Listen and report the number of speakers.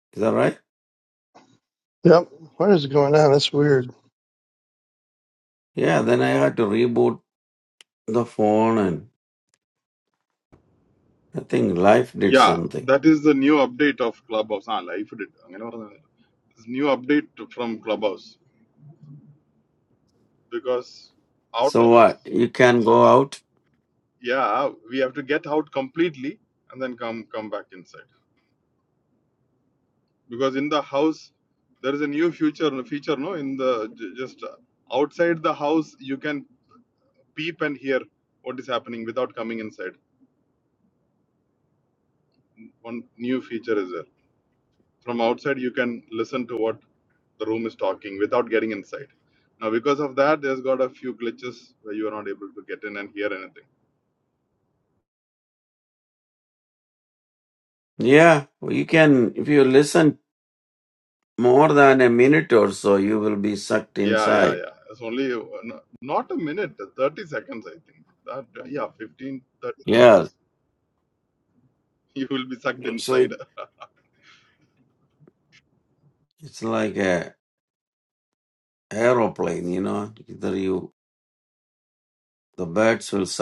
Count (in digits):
3